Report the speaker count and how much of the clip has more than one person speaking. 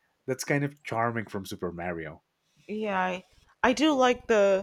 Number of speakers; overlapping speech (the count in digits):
2, no overlap